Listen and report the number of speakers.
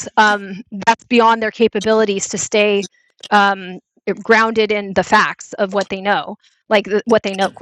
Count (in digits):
1